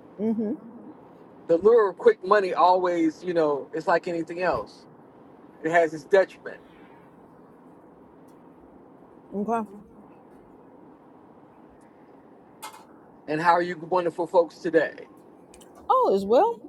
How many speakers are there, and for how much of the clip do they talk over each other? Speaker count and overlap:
two, no overlap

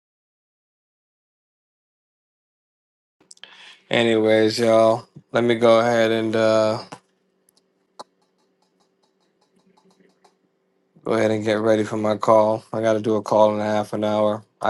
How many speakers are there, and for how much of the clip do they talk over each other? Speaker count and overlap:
one, no overlap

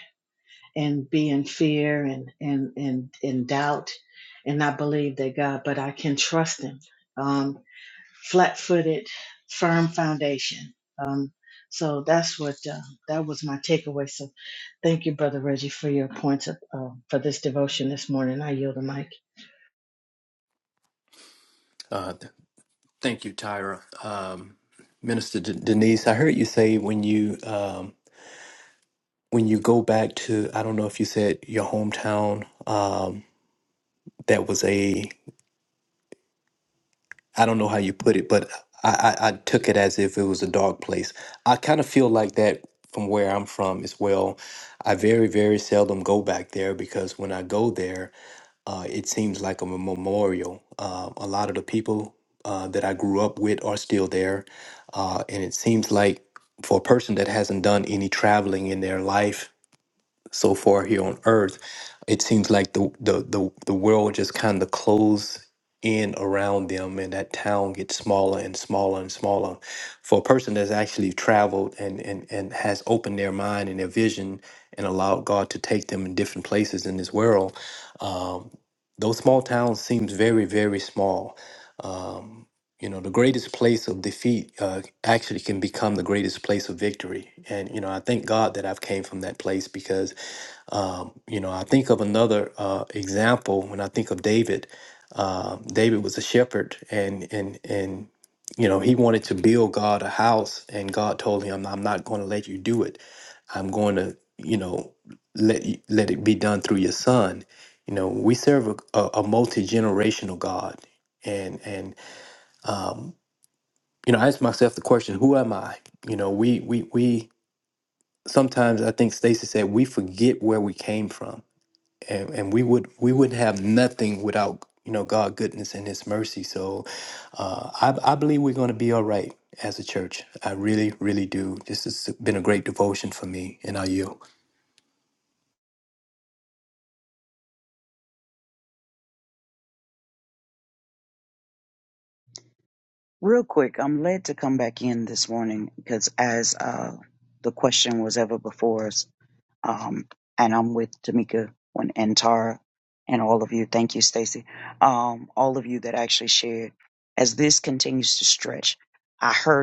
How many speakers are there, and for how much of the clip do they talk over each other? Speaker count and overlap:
three, no overlap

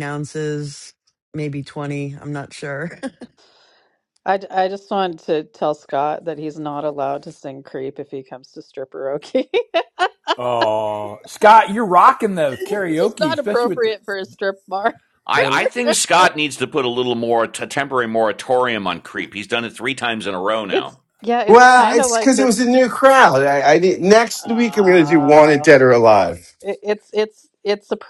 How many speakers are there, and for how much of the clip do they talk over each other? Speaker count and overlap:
five, about 14%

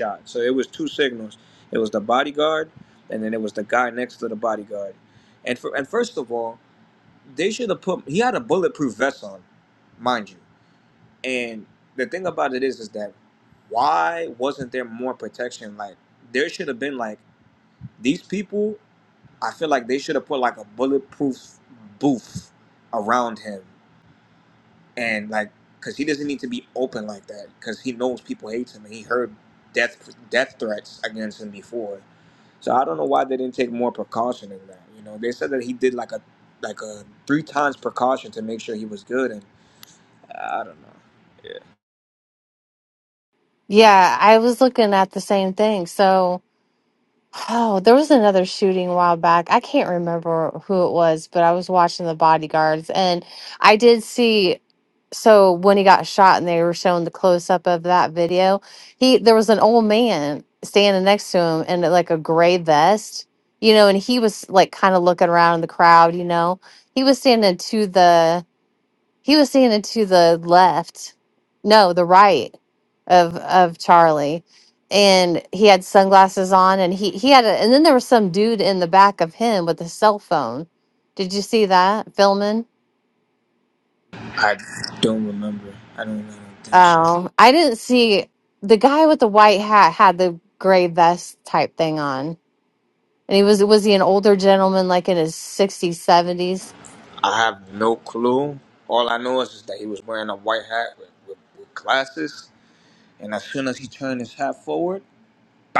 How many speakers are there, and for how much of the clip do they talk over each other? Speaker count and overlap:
two, under 1%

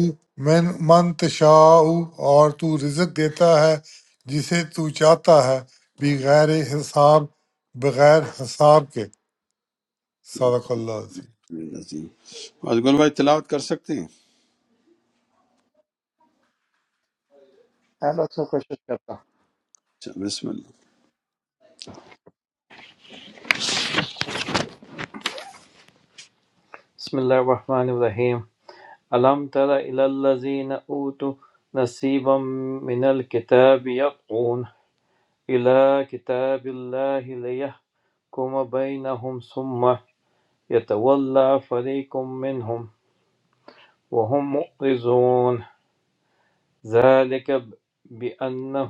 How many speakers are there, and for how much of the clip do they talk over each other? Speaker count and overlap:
three, no overlap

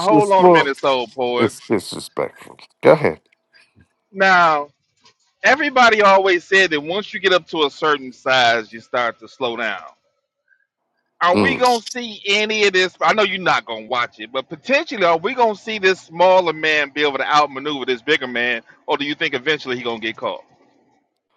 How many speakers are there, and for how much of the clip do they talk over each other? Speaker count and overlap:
two, about 6%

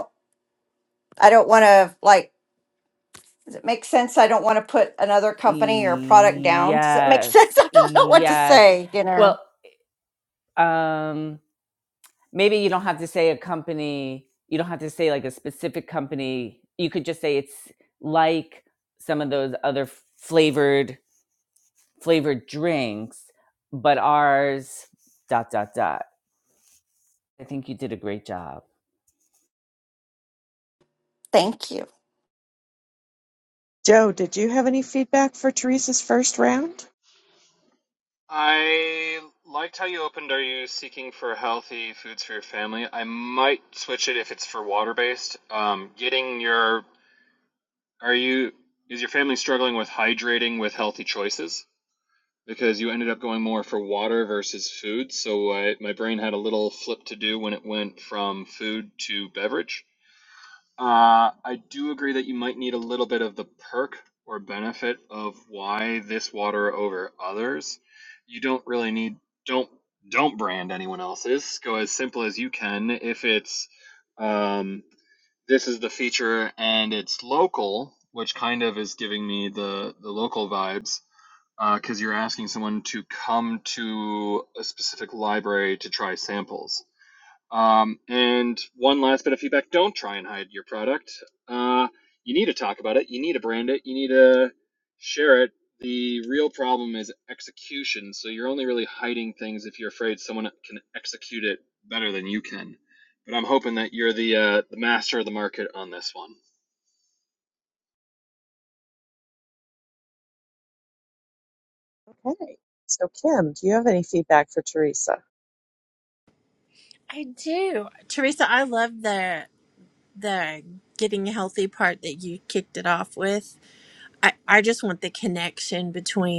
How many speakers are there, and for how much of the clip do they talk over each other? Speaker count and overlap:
five, about 1%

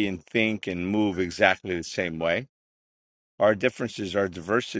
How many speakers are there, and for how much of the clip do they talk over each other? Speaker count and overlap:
one, no overlap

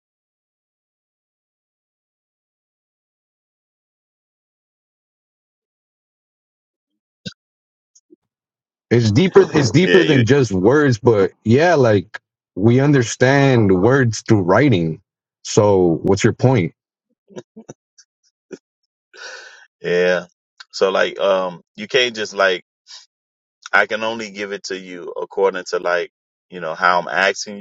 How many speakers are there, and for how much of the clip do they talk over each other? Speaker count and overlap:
two, about 2%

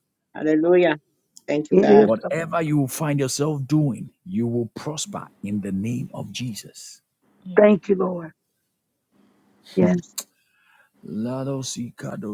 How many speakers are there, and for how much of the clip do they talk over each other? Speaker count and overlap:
three, about 5%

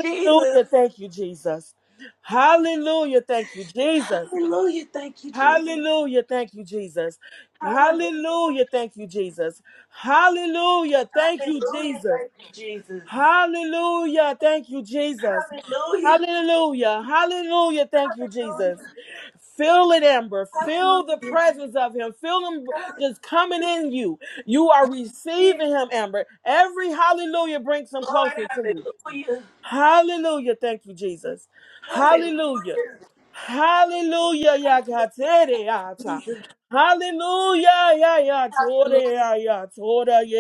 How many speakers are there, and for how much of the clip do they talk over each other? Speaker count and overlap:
two, about 13%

